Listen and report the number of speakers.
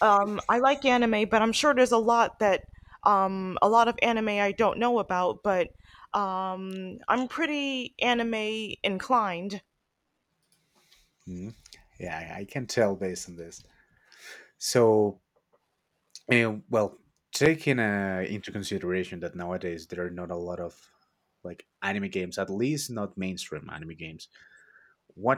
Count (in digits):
2